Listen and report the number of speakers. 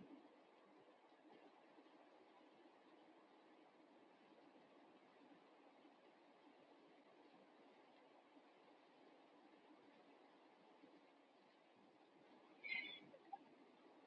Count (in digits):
0